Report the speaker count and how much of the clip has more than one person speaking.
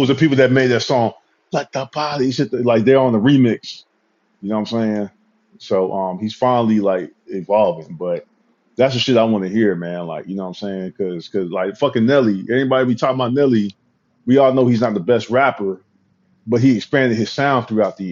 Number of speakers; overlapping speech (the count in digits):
1, no overlap